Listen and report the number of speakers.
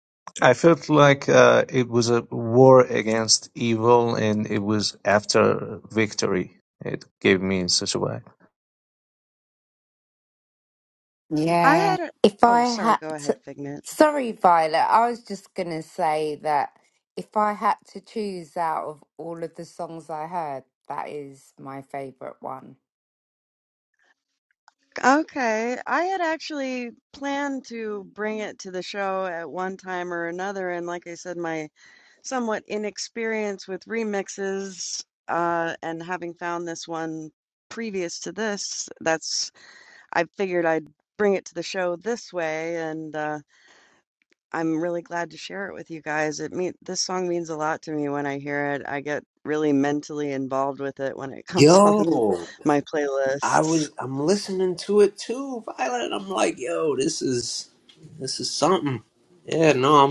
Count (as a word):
four